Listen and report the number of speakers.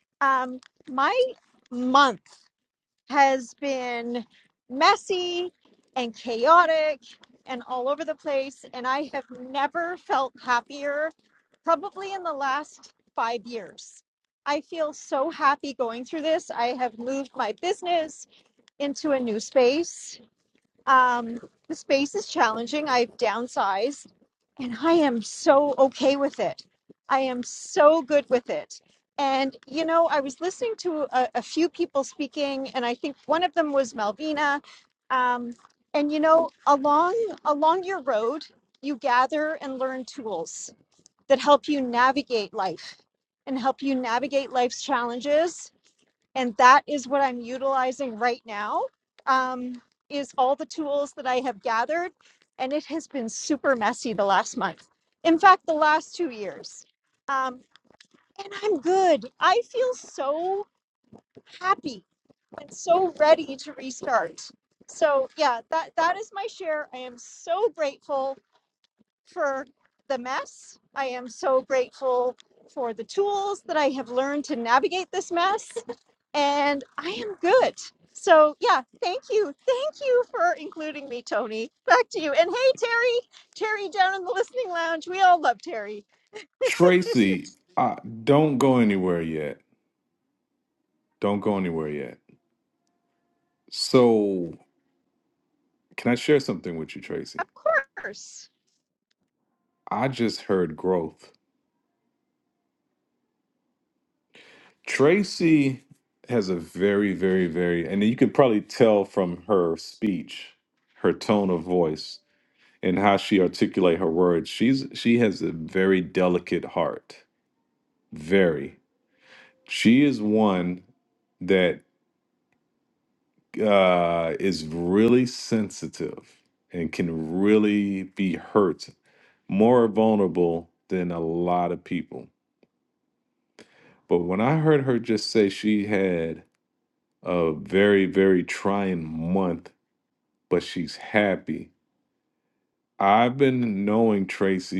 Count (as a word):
two